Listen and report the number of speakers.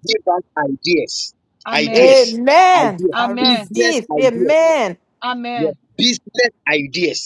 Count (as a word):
three